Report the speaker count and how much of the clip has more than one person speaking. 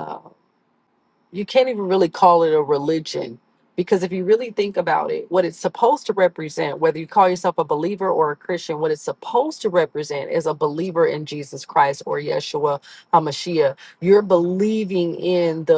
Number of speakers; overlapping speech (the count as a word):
one, no overlap